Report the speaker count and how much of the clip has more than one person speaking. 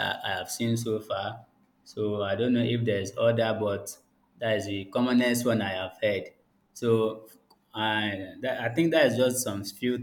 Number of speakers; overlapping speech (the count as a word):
one, no overlap